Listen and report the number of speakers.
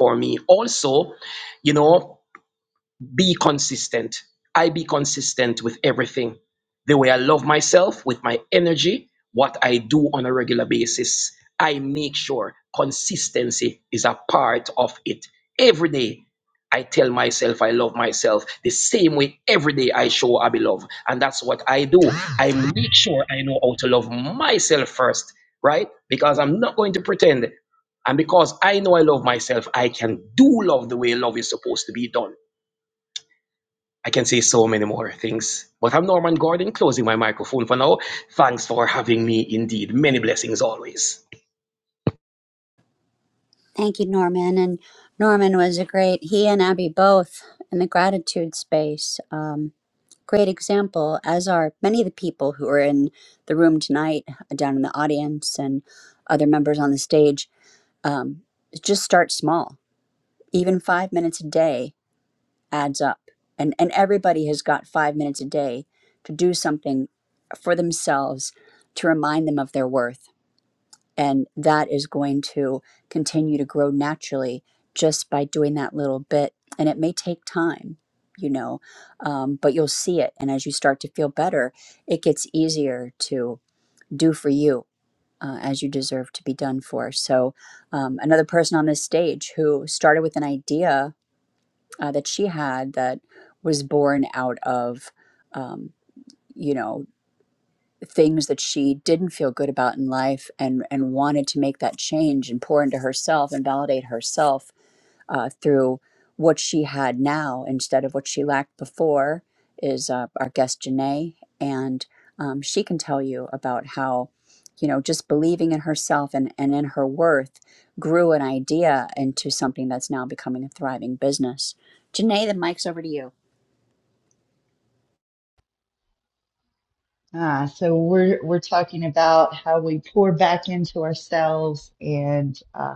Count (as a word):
three